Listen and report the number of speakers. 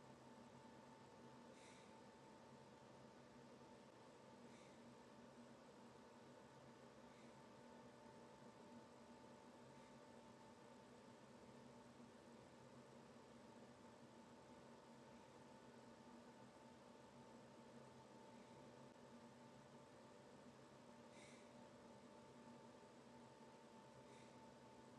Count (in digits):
0